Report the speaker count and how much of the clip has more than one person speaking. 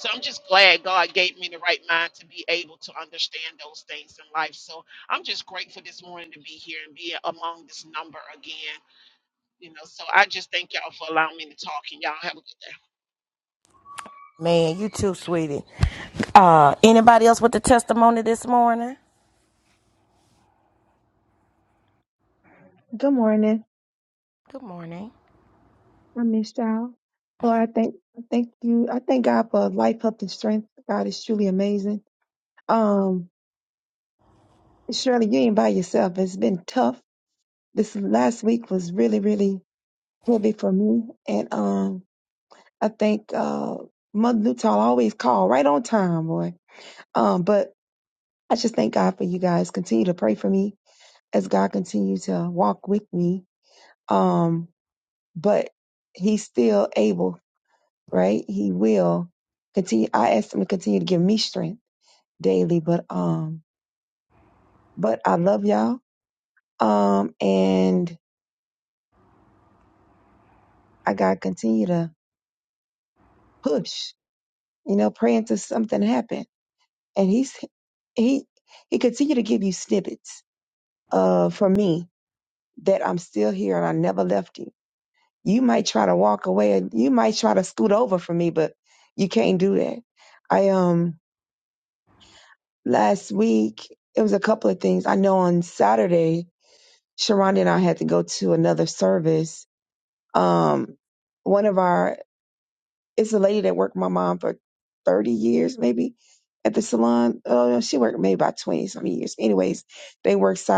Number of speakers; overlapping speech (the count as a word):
three, no overlap